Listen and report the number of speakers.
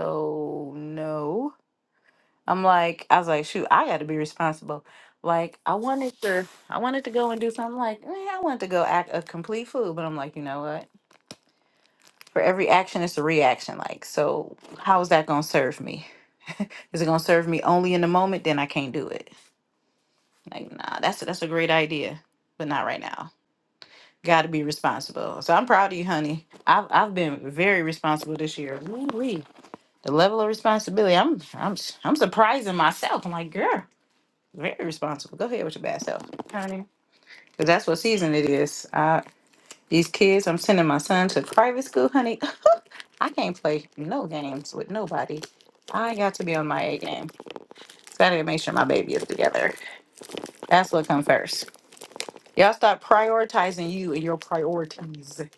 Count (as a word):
one